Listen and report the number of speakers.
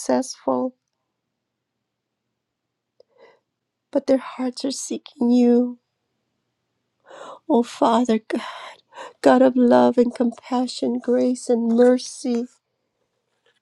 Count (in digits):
1